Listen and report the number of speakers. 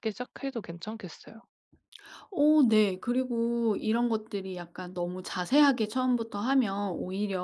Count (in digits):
2